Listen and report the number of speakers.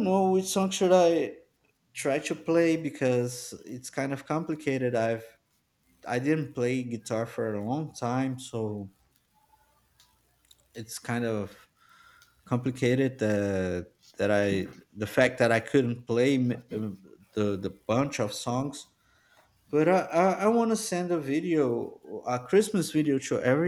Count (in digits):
1